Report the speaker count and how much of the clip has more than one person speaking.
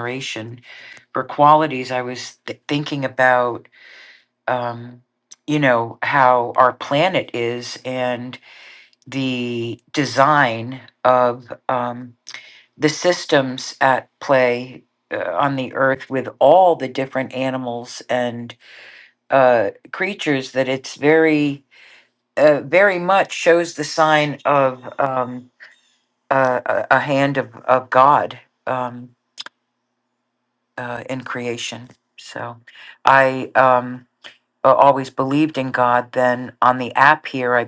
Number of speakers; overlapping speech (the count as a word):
one, no overlap